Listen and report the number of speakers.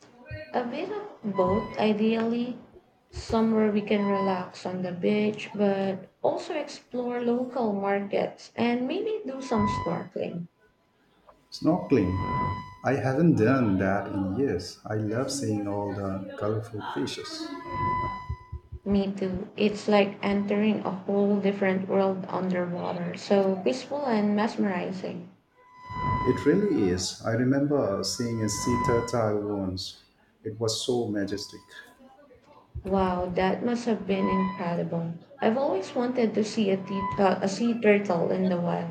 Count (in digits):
2